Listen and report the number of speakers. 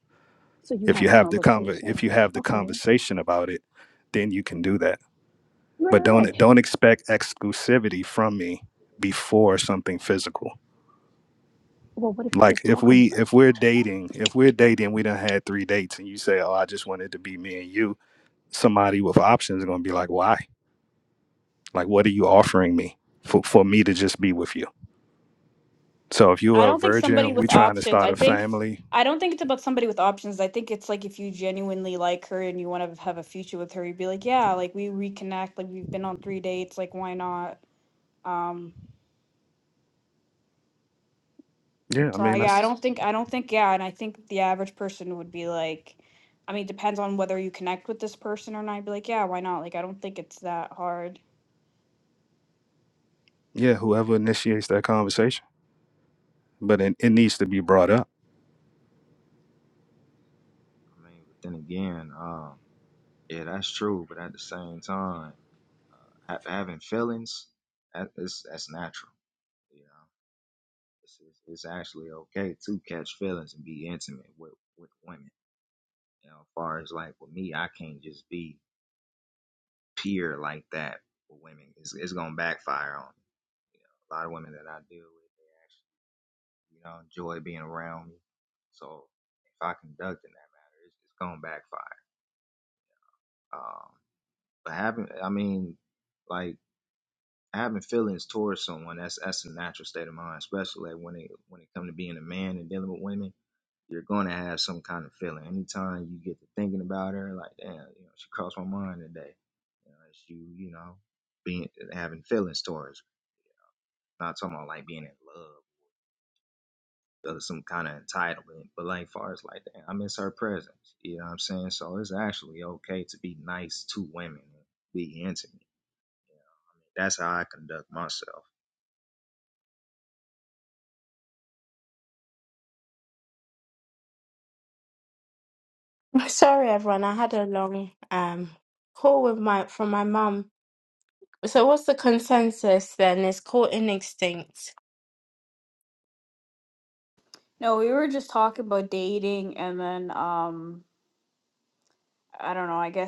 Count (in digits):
5